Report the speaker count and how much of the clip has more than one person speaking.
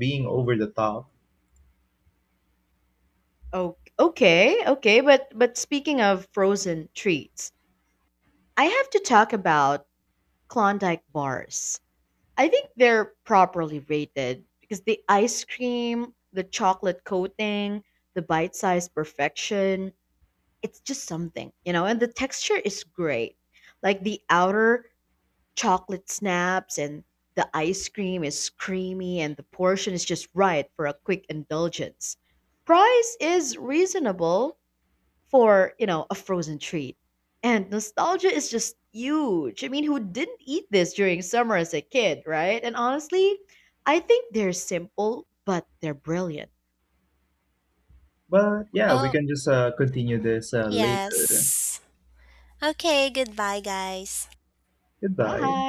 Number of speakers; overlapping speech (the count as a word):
three, about 3%